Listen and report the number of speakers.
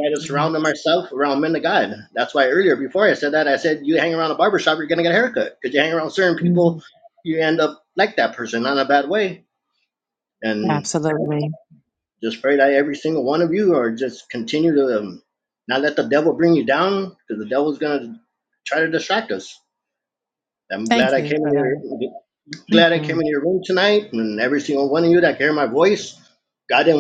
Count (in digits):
2